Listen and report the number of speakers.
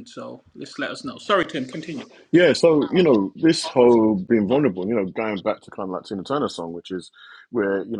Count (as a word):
two